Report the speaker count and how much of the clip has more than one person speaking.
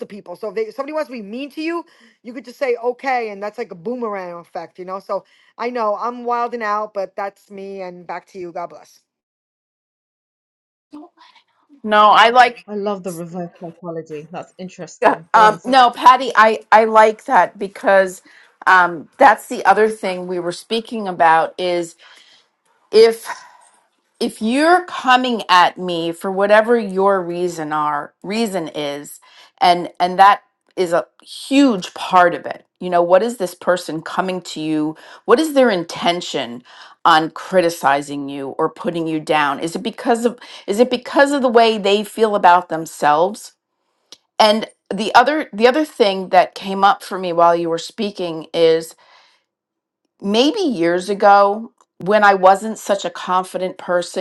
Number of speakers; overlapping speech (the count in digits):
3, about 1%